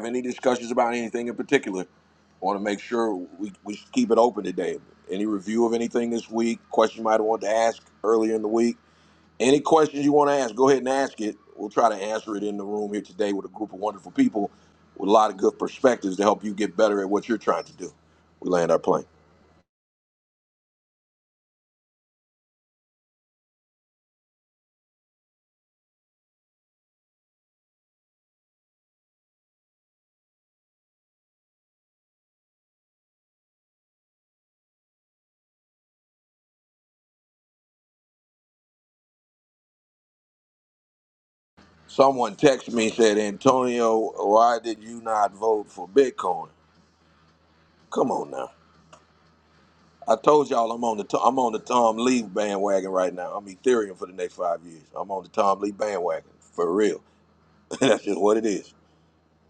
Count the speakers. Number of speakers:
one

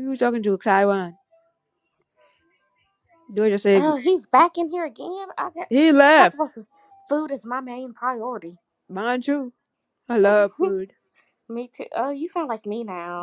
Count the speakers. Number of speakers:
two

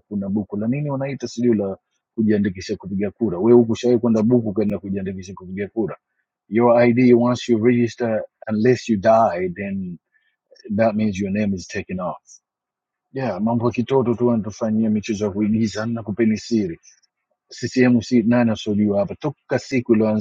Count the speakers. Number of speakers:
one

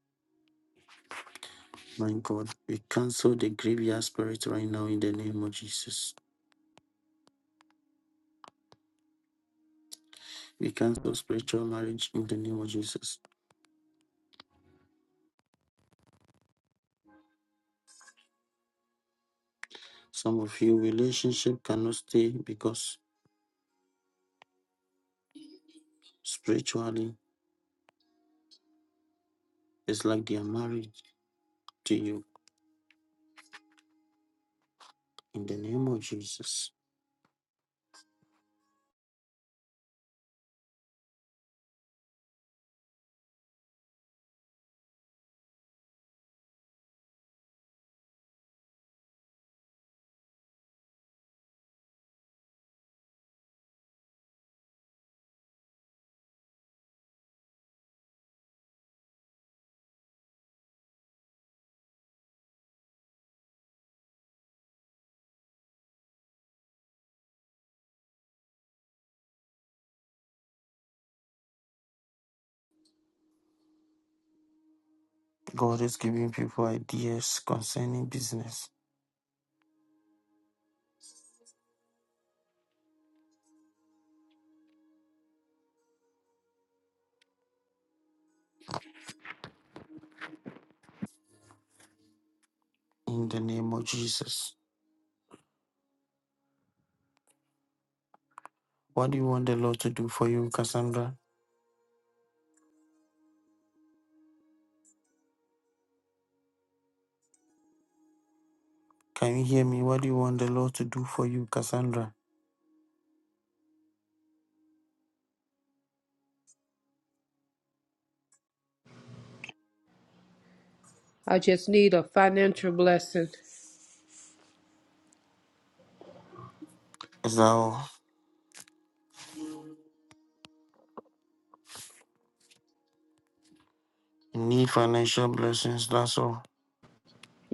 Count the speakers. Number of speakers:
two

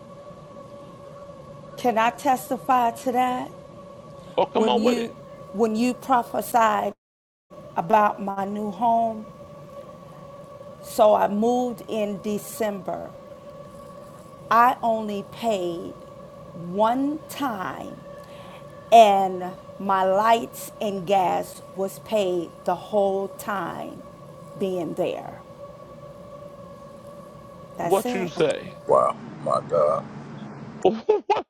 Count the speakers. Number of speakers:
three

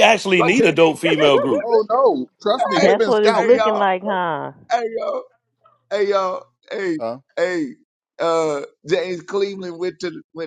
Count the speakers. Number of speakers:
four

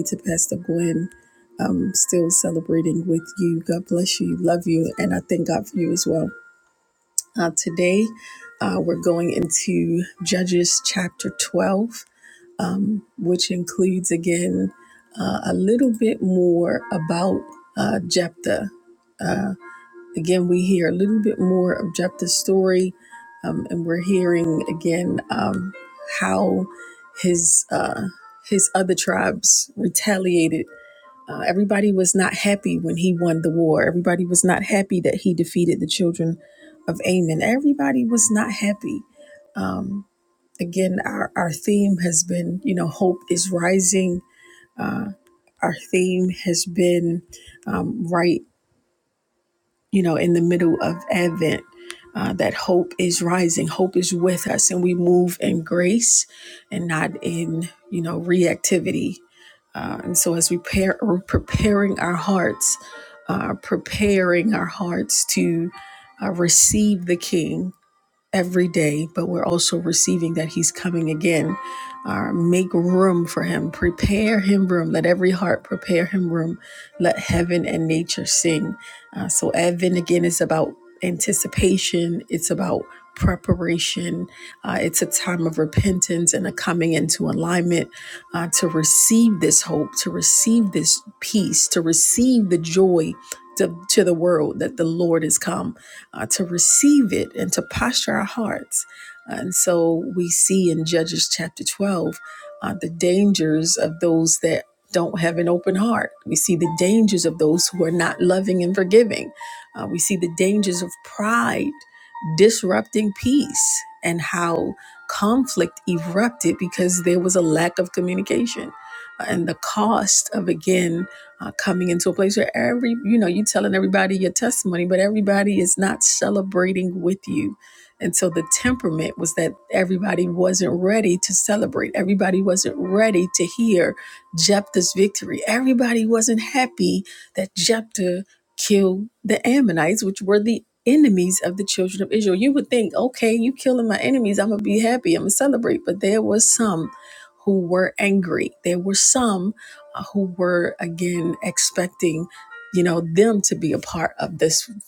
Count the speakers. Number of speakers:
one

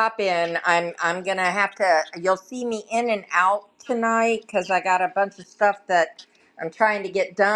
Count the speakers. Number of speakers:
one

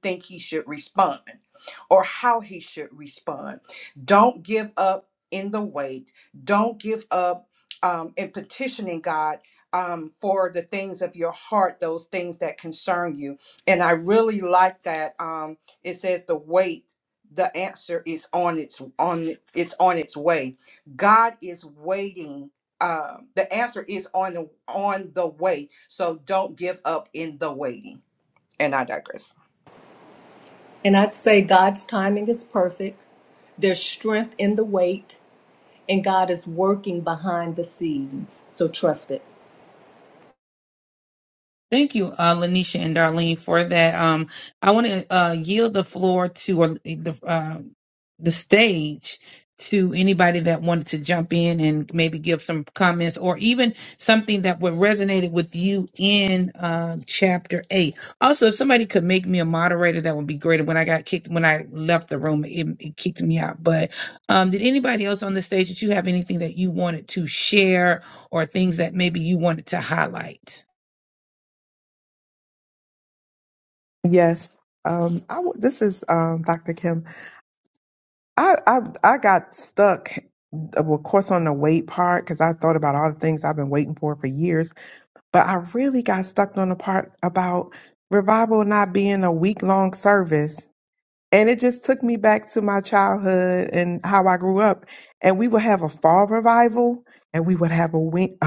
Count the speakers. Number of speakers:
four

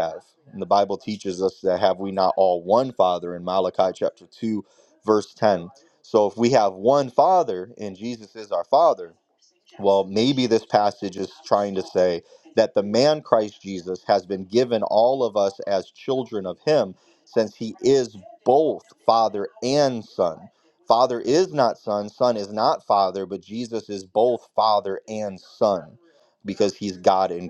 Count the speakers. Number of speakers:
one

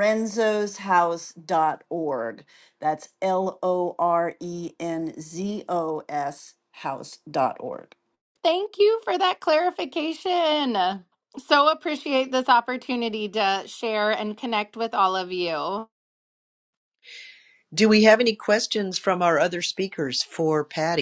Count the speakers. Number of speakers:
three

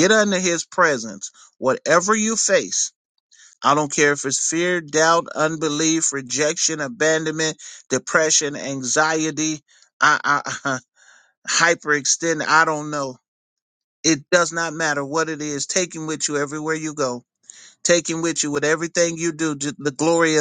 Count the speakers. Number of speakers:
one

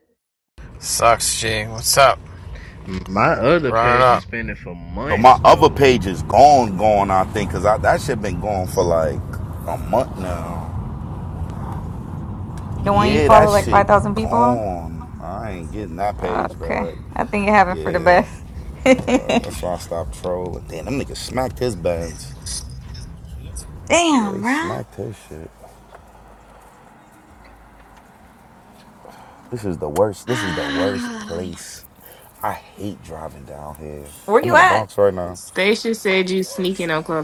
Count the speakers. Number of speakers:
five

